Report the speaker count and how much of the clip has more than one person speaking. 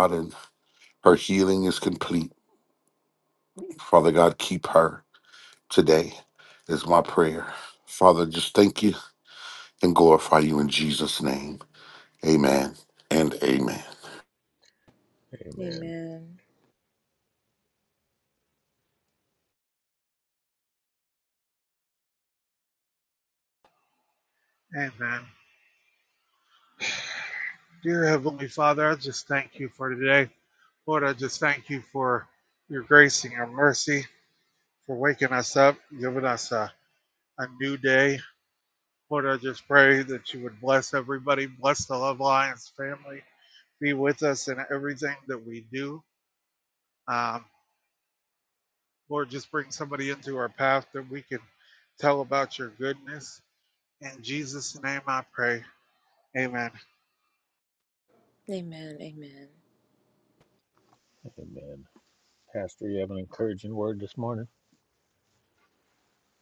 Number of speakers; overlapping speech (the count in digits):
4, about 1%